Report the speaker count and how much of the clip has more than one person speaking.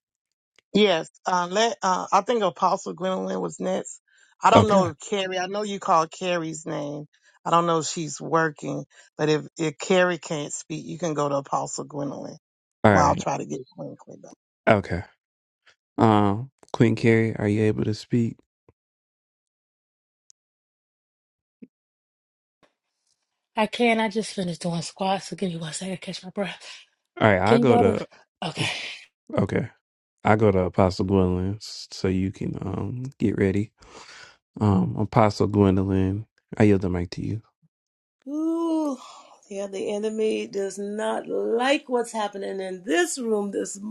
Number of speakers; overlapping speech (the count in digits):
4, about 3%